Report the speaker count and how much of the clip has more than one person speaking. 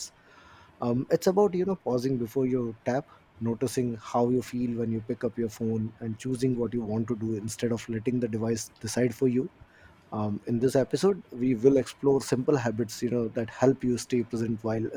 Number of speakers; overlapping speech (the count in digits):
1, no overlap